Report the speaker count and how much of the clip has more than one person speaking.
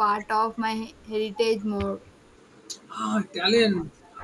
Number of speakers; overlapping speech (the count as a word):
two, no overlap